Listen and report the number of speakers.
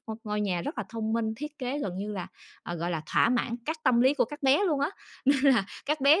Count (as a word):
one